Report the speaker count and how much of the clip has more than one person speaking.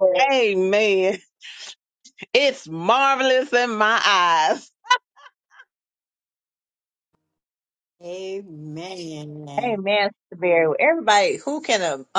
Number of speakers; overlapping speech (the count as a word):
three, no overlap